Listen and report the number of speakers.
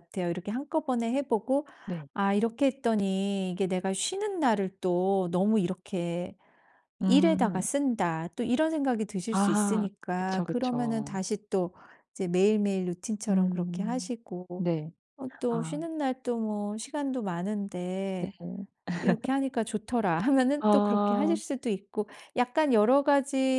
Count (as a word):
two